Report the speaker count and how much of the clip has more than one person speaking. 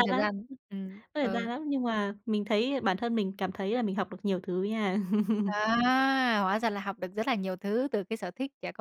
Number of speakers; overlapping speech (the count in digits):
2, about 7%